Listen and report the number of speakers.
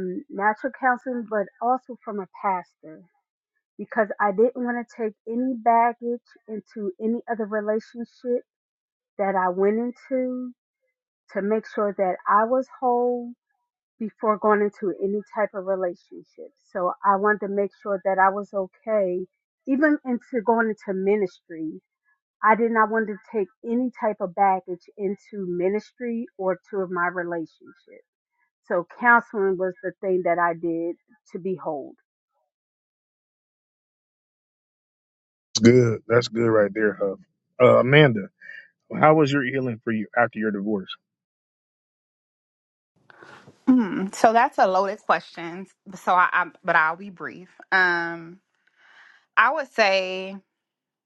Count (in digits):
3